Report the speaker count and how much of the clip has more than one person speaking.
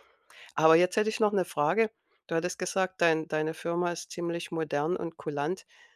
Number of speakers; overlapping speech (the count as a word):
one, no overlap